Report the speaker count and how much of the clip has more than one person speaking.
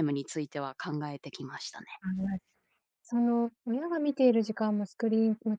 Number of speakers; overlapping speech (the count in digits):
2, no overlap